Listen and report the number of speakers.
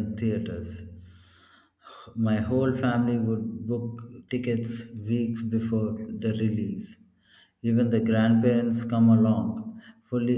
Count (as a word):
one